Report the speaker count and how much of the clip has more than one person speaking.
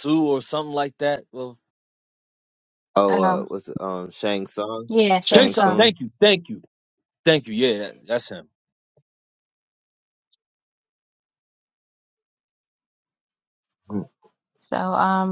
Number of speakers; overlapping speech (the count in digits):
3, about 7%